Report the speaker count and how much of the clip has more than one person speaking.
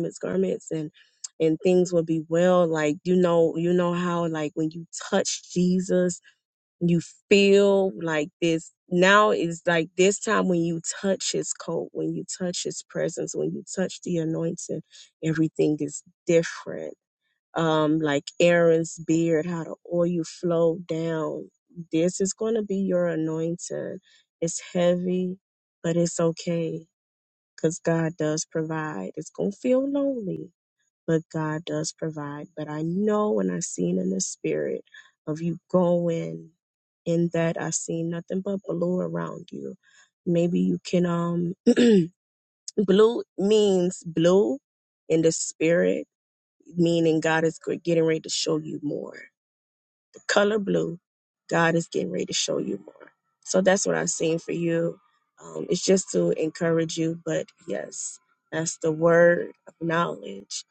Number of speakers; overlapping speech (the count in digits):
1, no overlap